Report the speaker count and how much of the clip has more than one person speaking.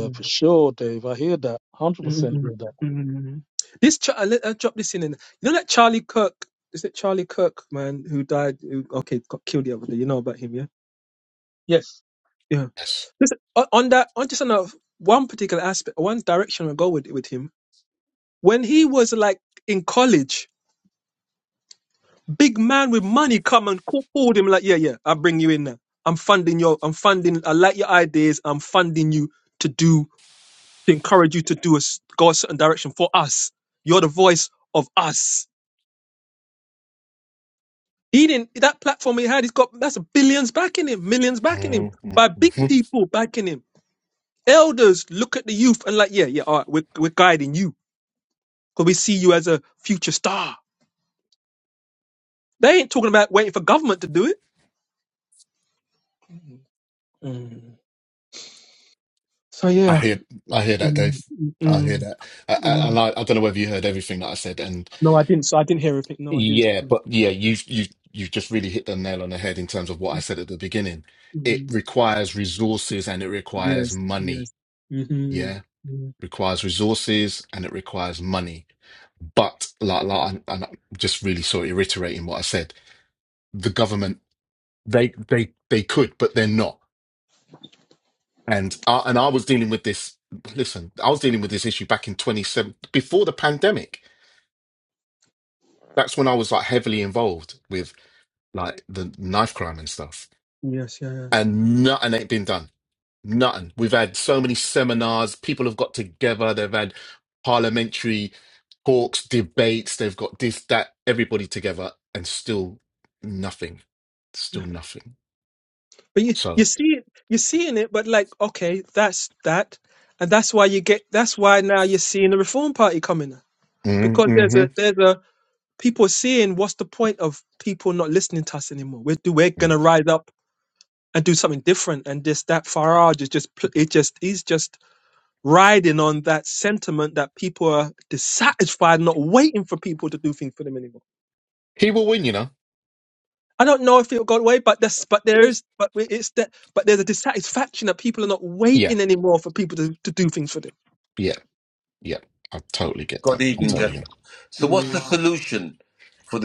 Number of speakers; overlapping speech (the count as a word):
four, about 4%